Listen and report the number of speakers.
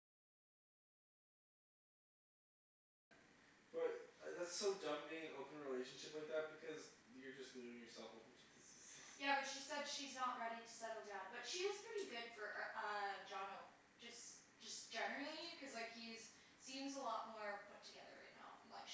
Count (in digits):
2